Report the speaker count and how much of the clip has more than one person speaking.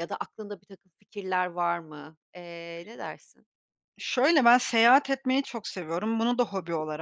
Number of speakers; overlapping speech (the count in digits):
2, no overlap